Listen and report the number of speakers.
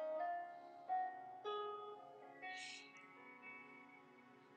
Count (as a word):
zero